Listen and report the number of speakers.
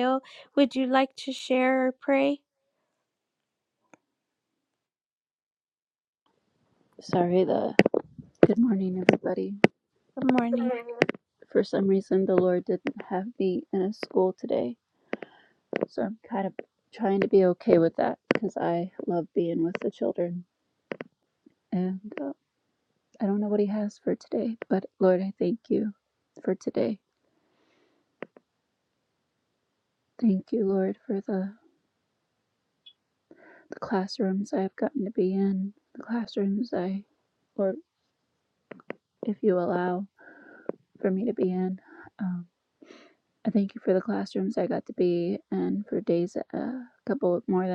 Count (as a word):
two